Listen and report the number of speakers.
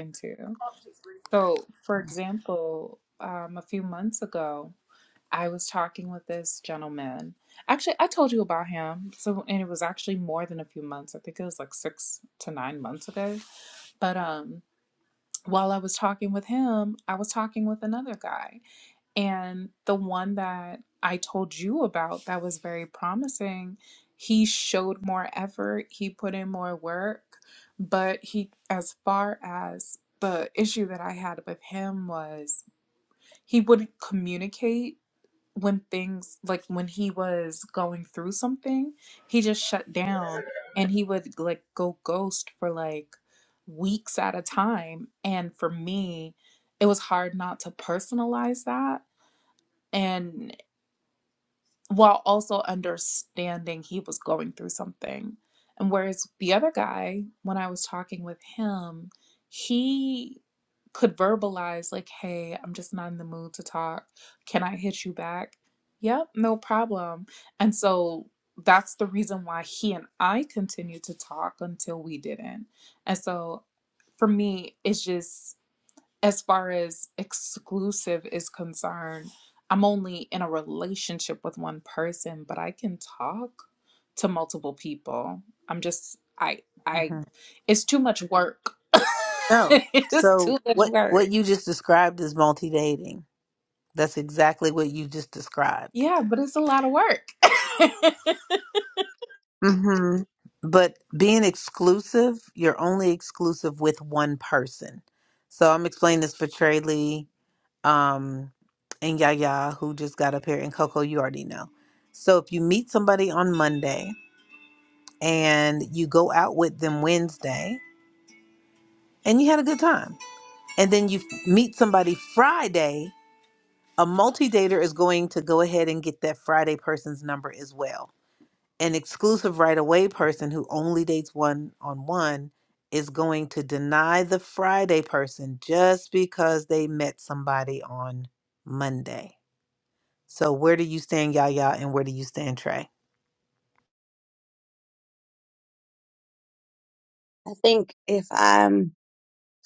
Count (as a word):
three